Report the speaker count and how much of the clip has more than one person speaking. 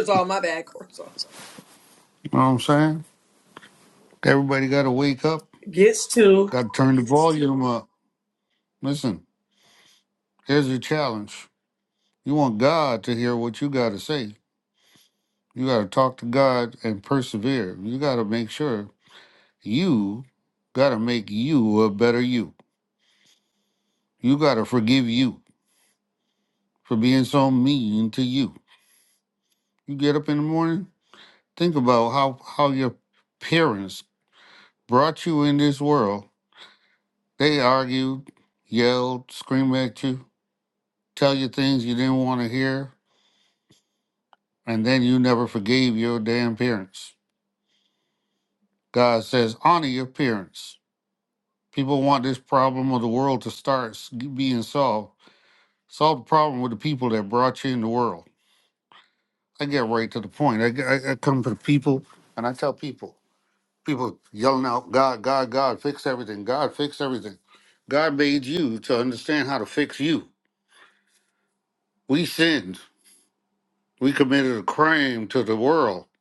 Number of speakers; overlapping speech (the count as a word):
two, under 1%